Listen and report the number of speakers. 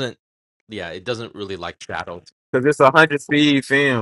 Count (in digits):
2